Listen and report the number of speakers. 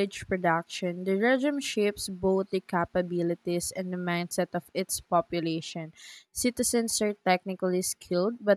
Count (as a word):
one